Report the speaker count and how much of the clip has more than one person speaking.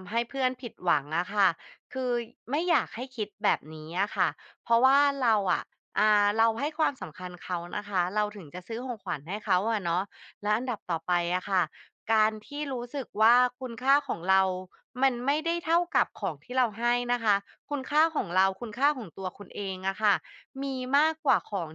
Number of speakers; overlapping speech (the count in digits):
1, no overlap